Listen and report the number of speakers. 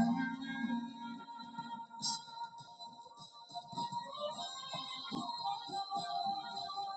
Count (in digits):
0